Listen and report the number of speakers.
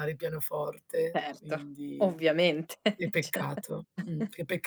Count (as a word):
two